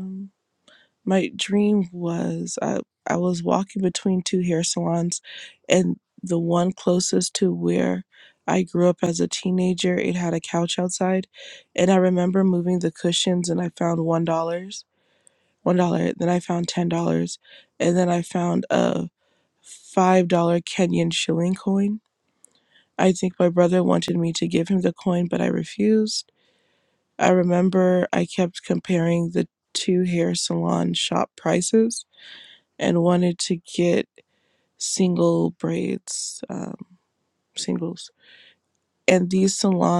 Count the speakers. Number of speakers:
one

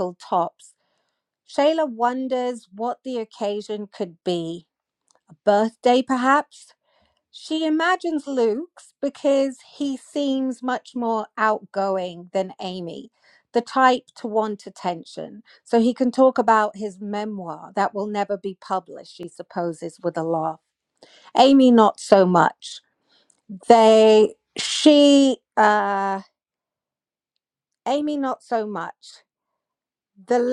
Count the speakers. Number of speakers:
one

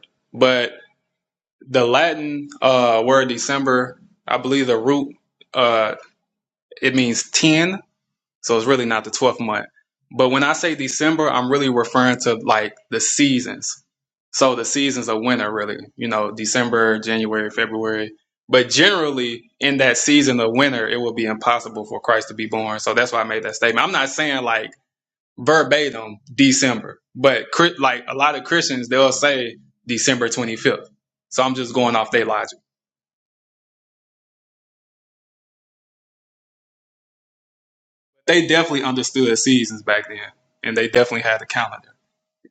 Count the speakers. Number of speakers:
one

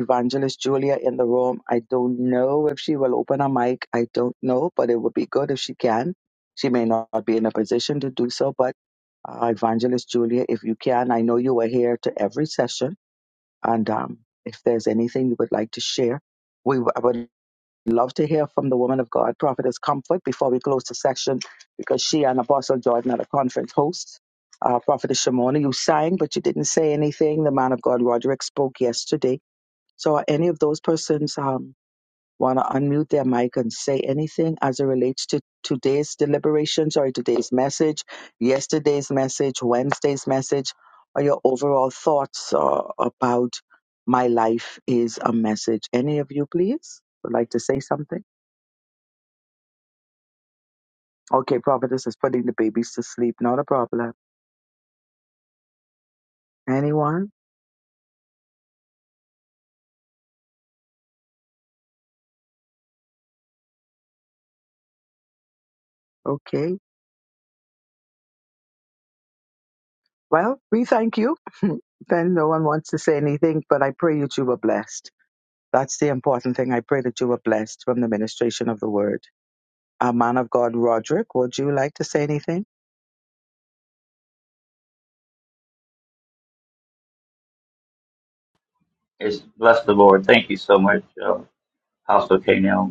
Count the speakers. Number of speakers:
two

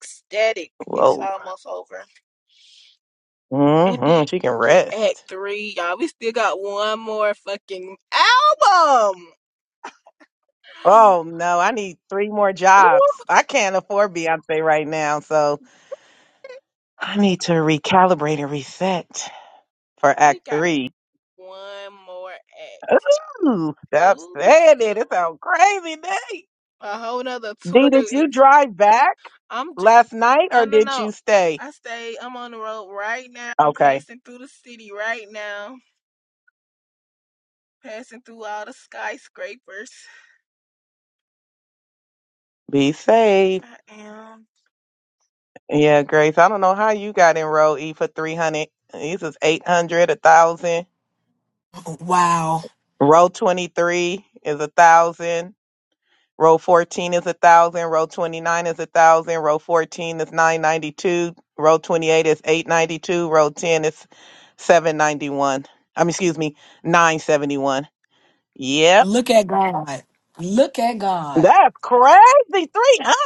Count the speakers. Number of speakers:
three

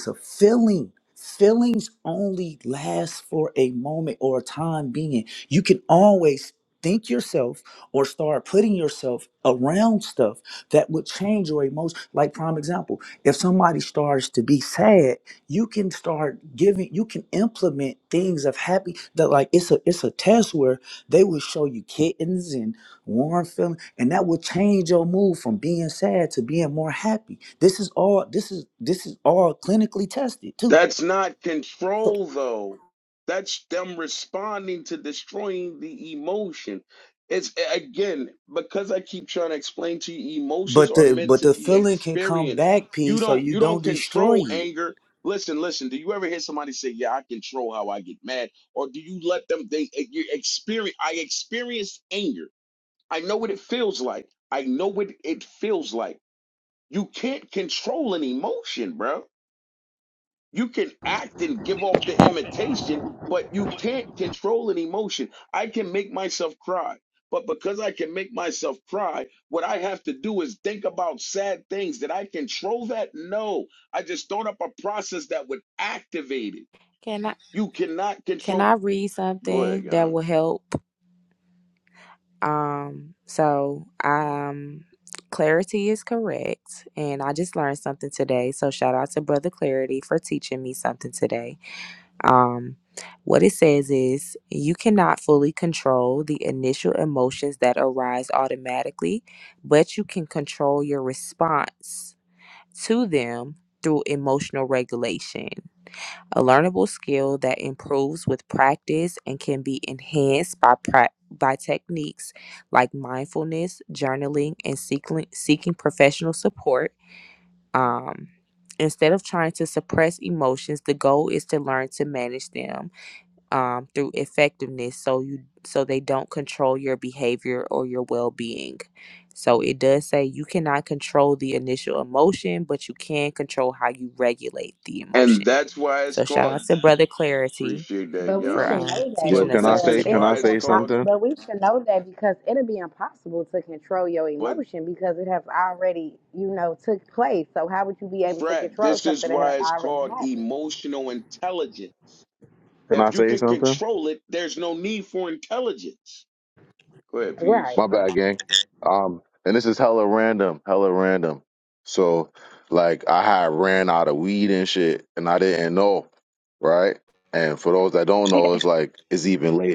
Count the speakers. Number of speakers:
five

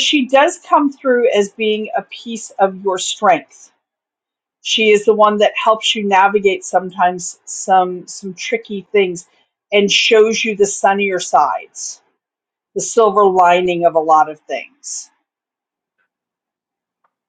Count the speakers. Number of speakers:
one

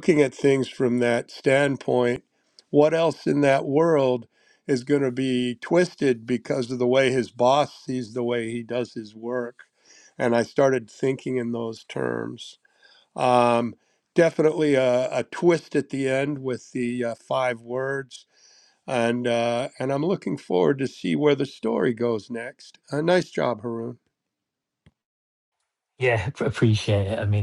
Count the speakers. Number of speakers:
two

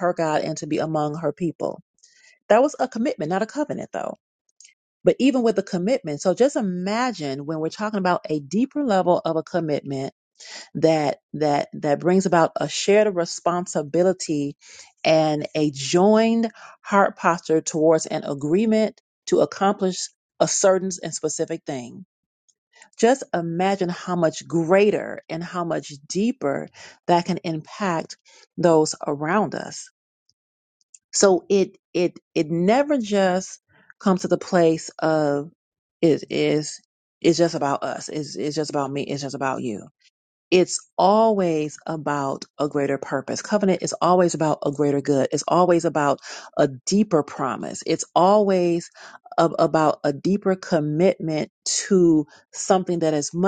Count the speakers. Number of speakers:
one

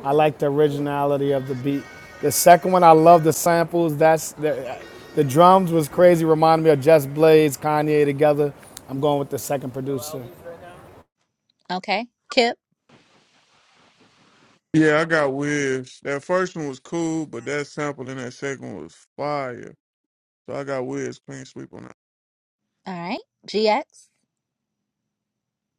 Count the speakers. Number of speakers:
three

